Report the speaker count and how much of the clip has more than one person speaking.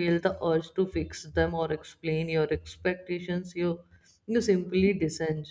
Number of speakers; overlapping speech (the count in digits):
1, no overlap